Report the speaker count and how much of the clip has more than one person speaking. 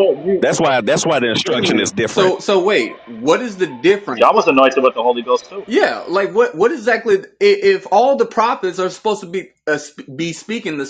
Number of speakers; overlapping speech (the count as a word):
three, about 9%